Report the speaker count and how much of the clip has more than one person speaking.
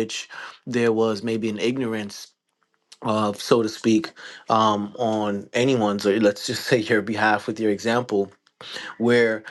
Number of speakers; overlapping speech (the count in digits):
1, no overlap